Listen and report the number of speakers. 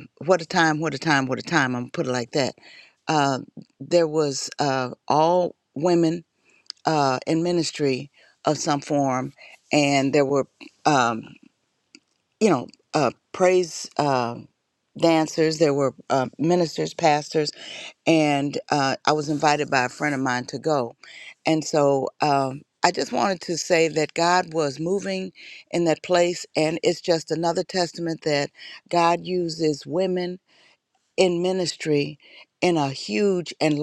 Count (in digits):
1